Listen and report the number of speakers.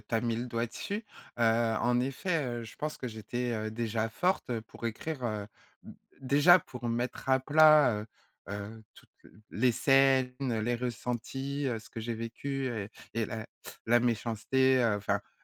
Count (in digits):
1